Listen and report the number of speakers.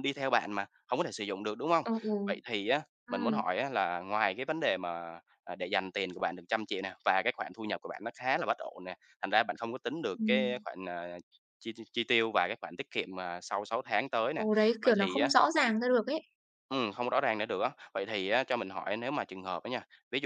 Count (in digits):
2